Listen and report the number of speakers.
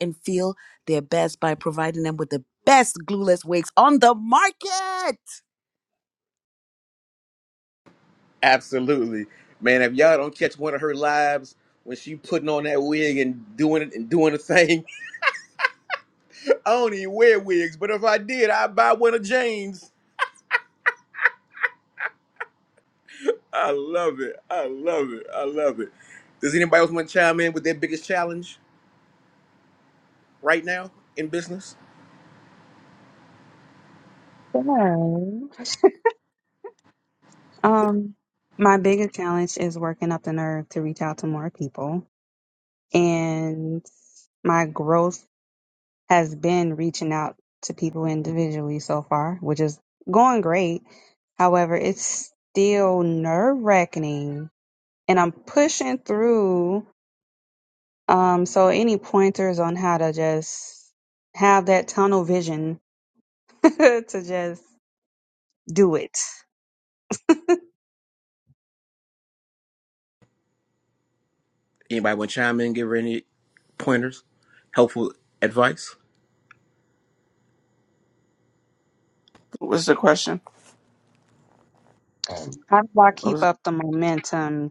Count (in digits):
4